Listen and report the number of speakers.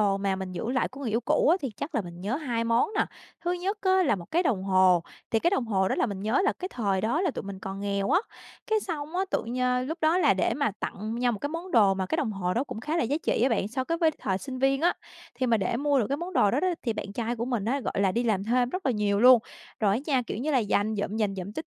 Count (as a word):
one